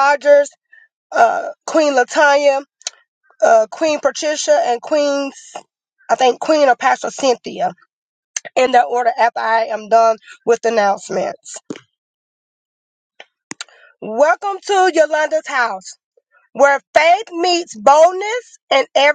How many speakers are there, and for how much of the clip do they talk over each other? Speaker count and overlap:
1, no overlap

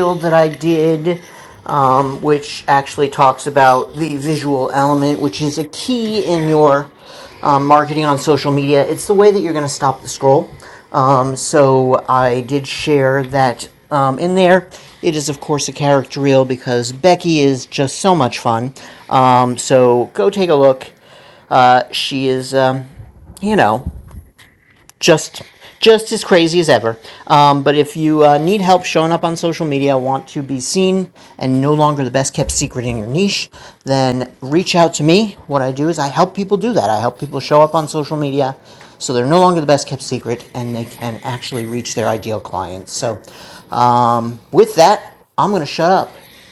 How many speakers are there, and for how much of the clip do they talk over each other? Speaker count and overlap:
1, no overlap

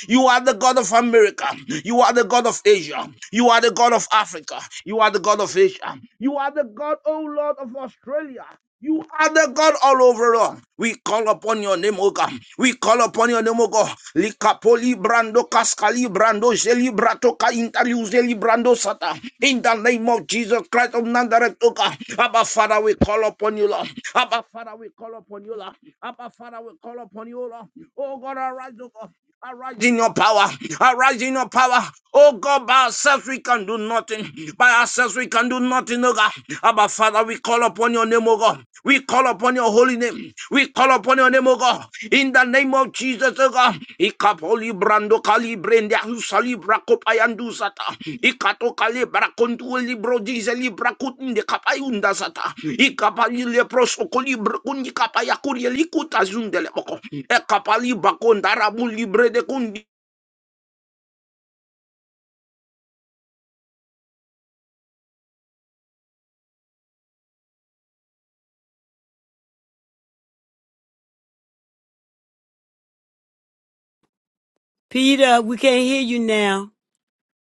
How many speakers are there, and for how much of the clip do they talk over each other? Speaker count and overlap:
2, no overlap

